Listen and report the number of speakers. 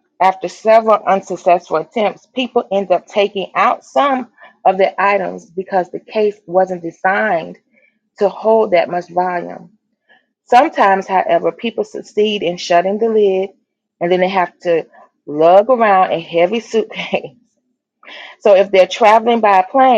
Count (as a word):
one